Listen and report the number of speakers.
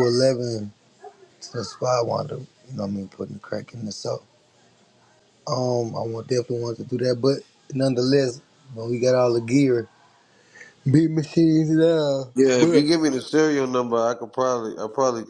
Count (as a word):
two